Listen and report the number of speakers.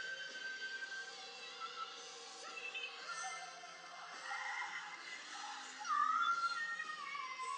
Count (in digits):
0